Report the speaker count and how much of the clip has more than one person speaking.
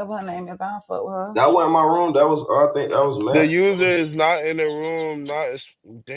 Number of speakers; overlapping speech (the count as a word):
three, about 8%